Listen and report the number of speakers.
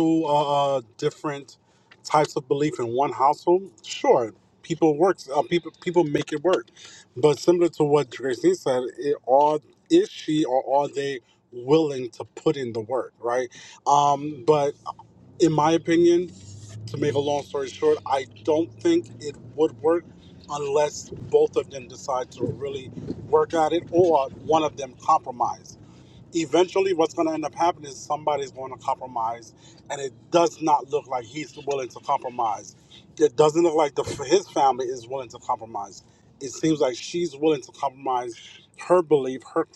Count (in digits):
1